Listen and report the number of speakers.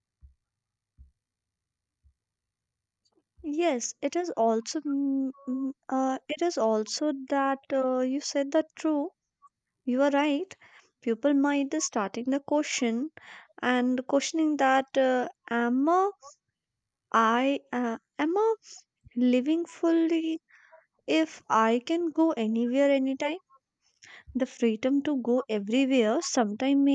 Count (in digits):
1